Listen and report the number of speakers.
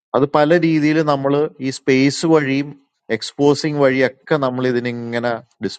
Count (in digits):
1